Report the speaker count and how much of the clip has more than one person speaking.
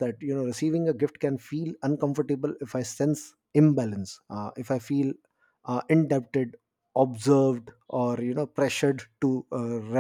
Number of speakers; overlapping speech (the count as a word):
one, no overlap